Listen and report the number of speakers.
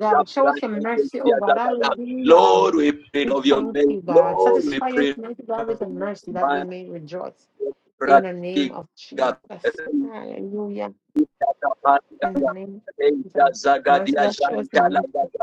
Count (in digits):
2